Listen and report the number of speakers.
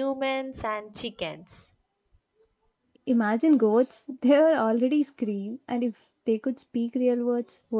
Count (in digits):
2